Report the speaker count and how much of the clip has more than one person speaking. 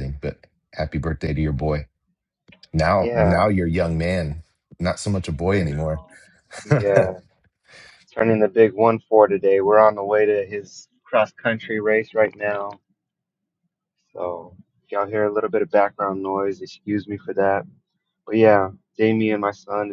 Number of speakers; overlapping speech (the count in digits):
2, about 6%